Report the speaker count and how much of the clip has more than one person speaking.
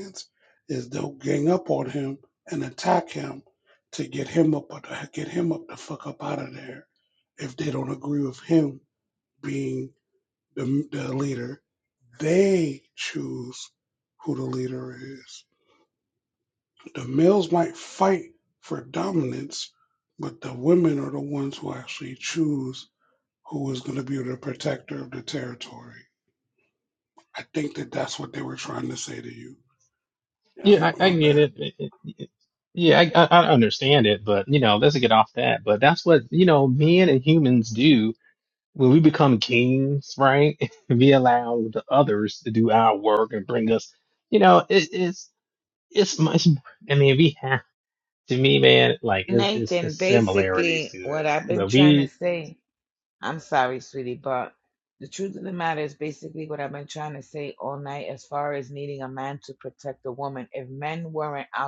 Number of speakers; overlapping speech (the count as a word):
three, about 6%